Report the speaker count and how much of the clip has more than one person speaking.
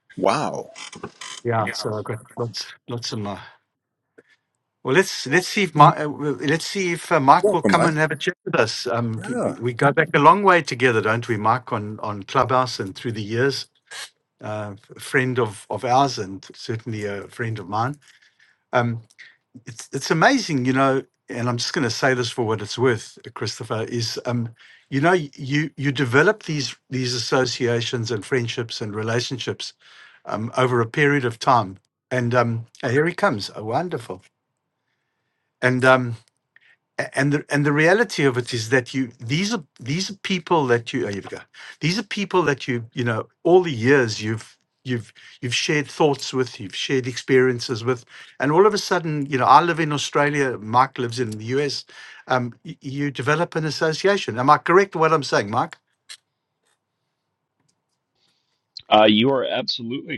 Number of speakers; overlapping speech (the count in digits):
3, about 2%